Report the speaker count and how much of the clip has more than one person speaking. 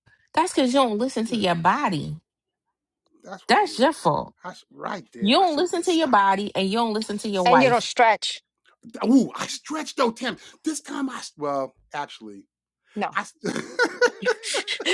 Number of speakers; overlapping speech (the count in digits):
3, about 11%